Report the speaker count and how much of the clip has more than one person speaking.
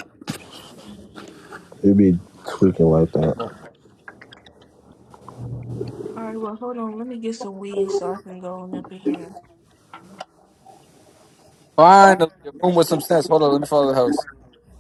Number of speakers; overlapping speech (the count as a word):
three, no overlap